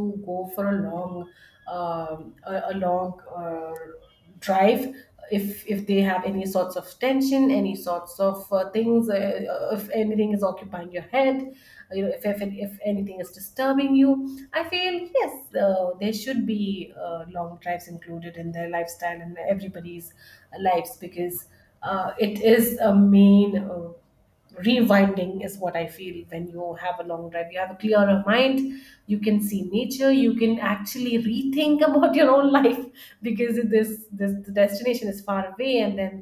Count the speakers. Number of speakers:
1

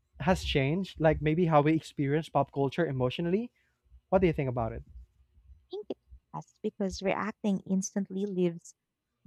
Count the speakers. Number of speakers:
2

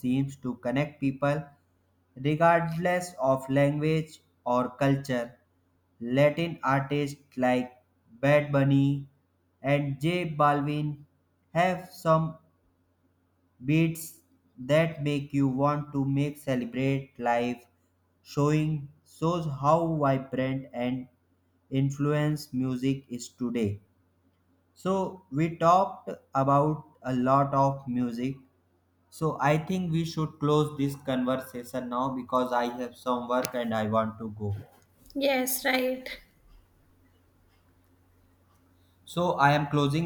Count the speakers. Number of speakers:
2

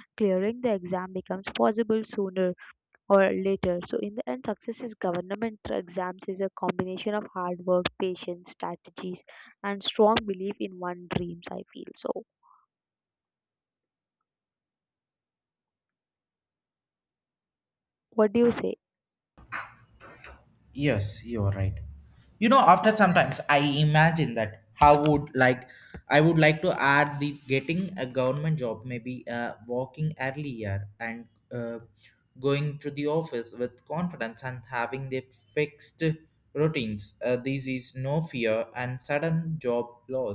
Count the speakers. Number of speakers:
2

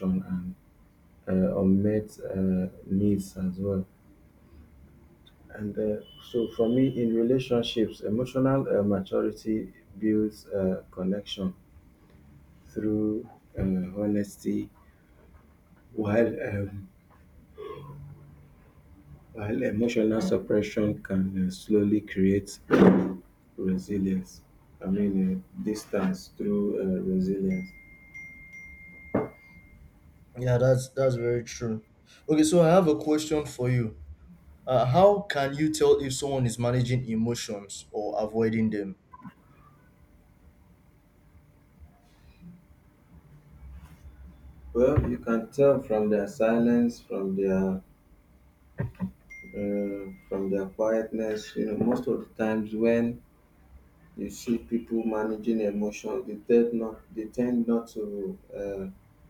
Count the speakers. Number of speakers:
2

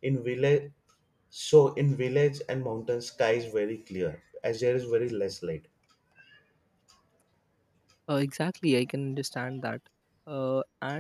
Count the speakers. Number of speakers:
2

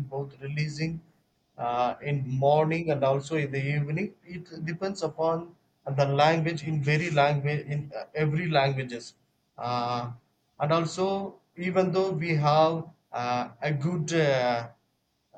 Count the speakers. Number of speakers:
1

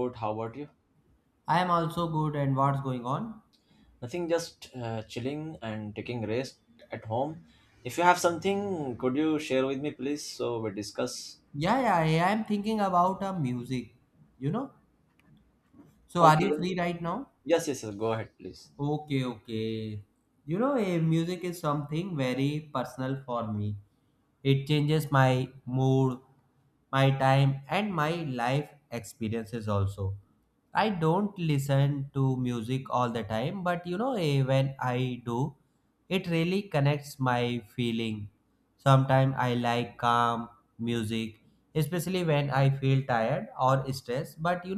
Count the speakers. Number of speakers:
2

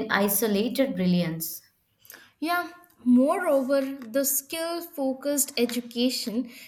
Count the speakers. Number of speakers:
2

